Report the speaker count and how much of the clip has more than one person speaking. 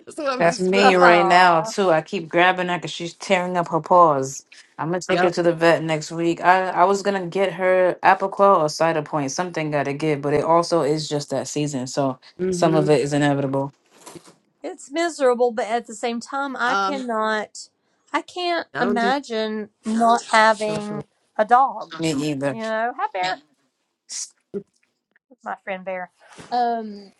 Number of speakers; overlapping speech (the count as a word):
three, about 11%